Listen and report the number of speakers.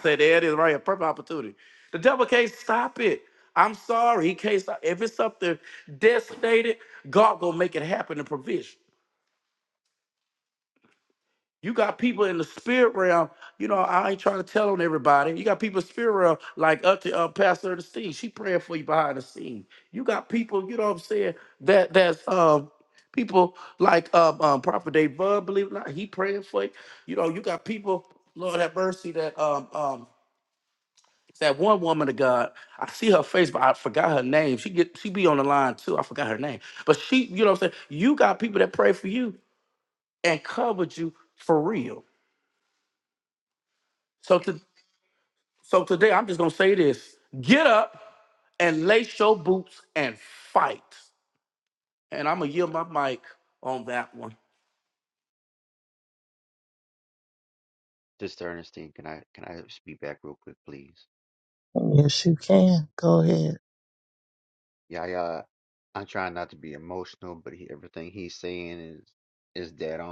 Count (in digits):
3